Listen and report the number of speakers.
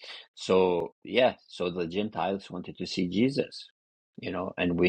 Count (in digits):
1